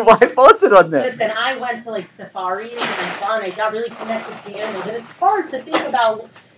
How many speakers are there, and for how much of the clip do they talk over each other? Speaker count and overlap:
2, about 5%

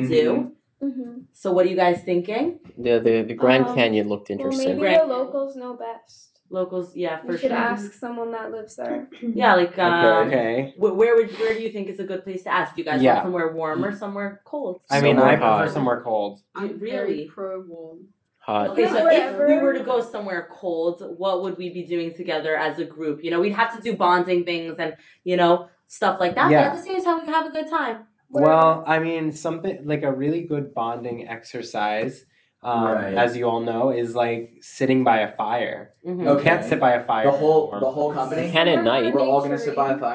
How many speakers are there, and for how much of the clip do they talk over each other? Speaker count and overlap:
6, about 26%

